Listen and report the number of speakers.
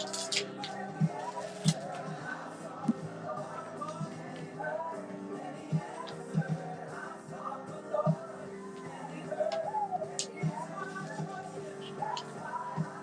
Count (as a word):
zero